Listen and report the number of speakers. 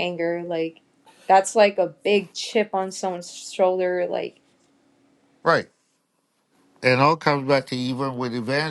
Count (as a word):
two